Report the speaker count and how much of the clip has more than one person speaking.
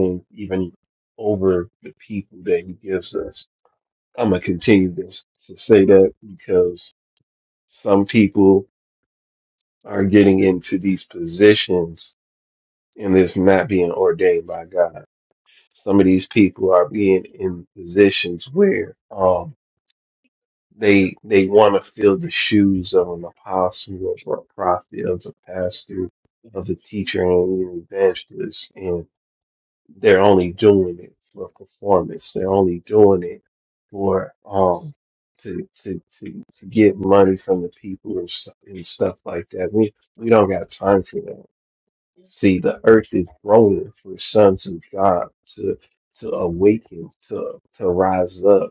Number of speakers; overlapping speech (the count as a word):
one, no overlap